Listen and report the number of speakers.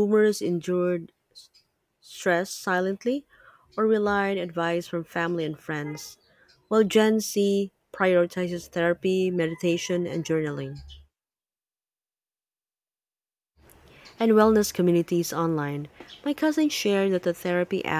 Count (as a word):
one